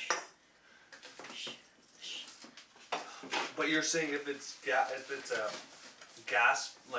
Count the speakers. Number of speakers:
1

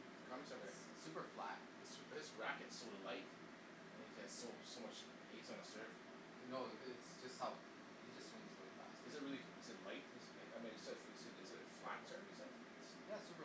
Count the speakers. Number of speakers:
2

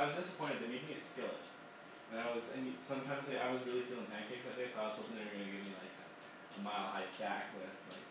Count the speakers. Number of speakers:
1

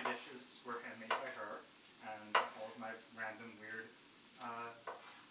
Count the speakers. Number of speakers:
1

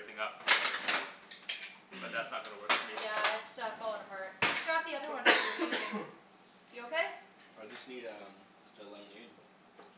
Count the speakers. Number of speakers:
3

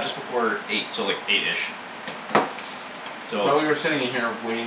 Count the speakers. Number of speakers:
2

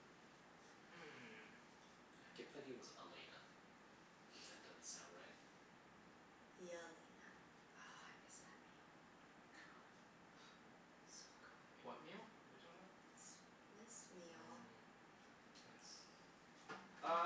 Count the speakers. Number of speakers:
3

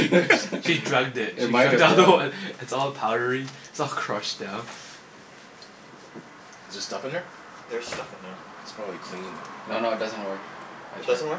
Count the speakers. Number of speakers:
4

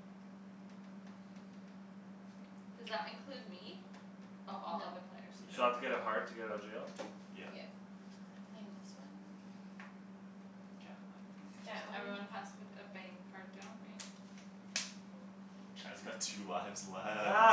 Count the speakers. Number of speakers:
4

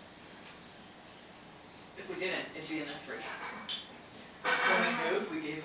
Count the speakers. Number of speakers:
1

